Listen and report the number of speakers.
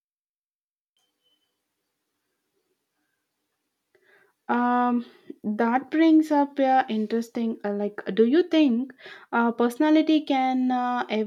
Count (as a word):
one